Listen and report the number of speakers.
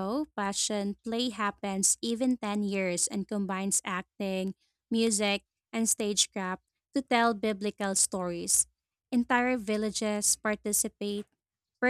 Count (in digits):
1